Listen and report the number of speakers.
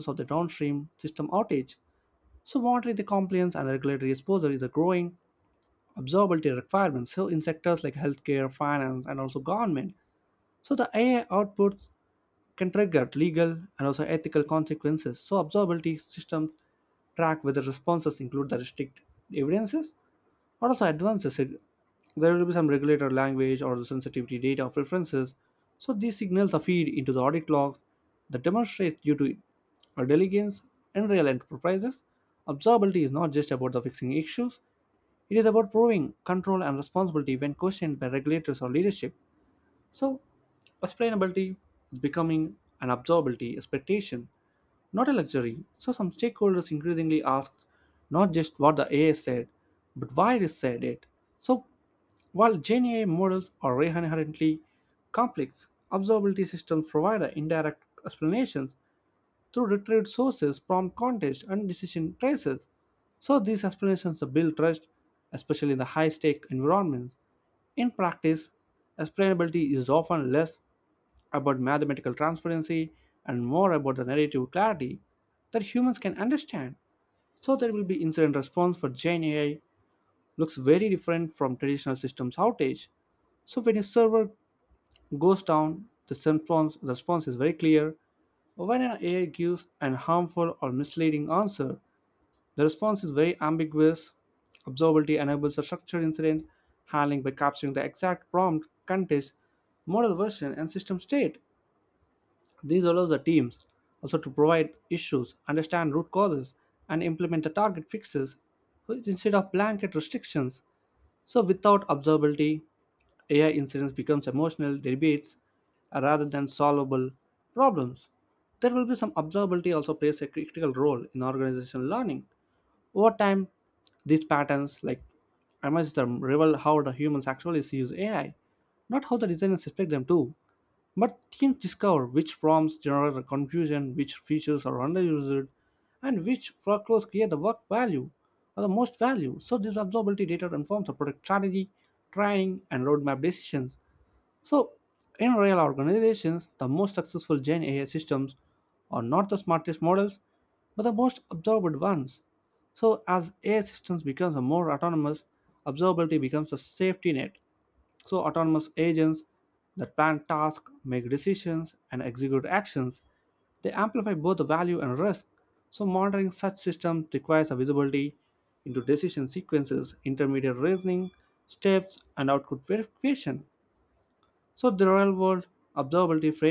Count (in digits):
1